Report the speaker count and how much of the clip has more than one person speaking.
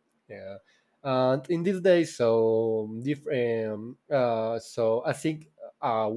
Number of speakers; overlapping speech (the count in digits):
1, no overlap